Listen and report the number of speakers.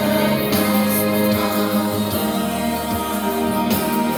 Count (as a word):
zero